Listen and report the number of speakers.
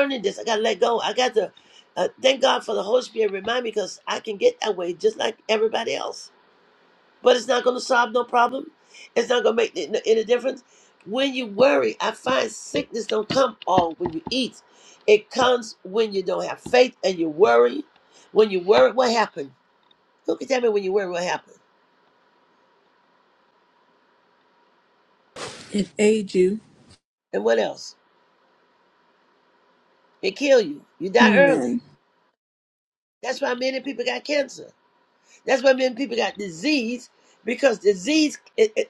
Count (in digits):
2